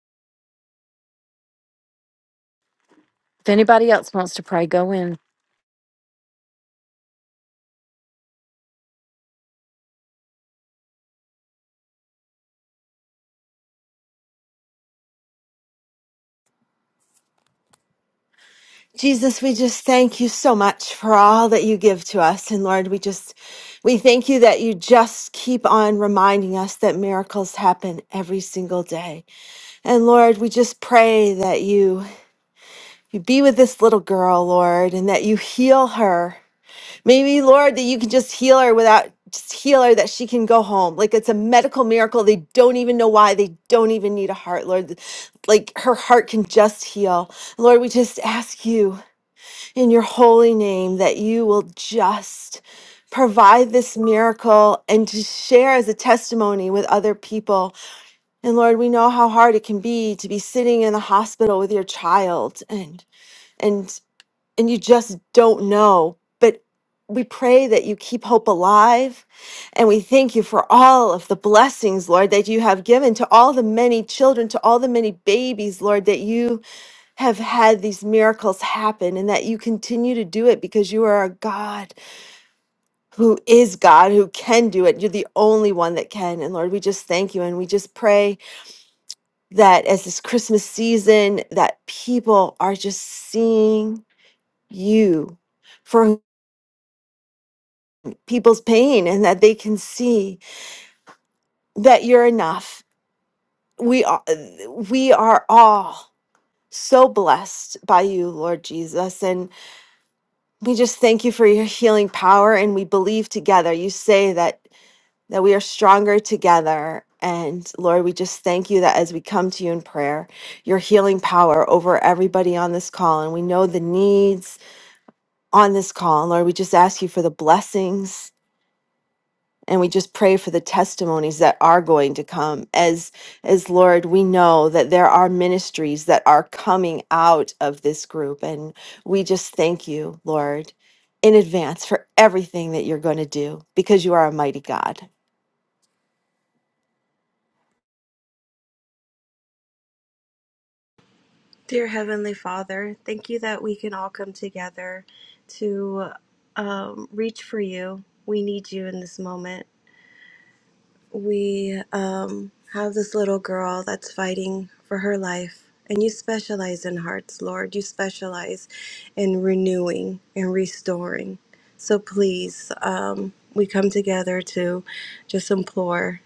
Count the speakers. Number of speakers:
3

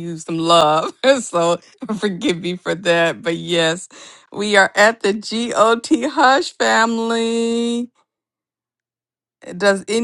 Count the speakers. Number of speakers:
1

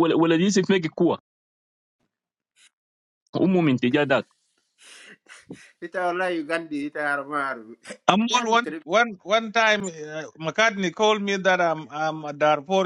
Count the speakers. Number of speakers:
3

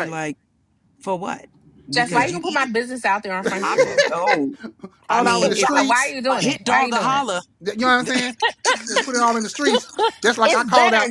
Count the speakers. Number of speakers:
3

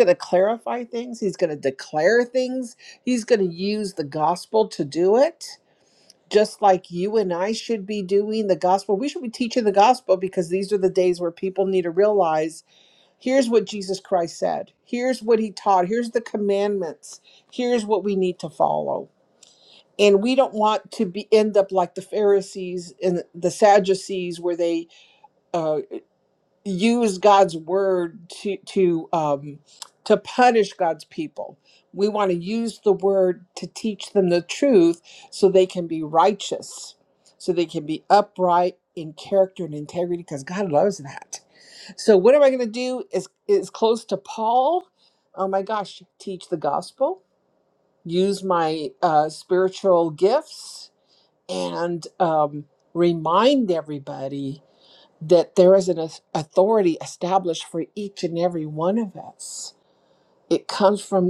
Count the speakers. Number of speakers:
1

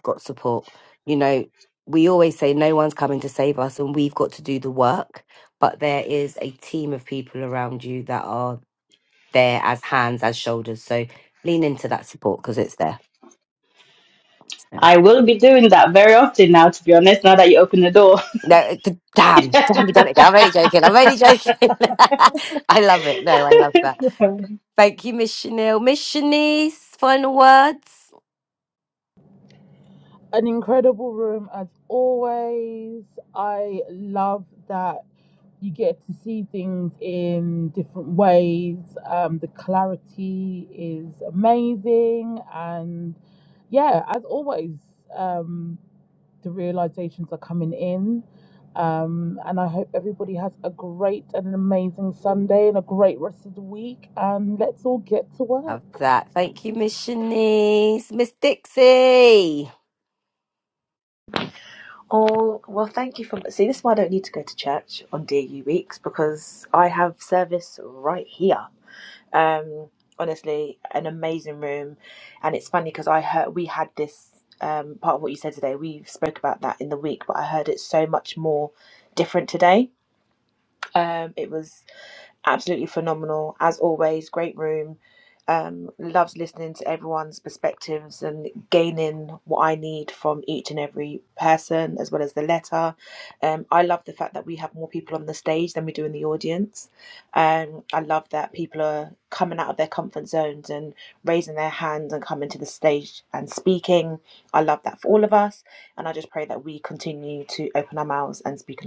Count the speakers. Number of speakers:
4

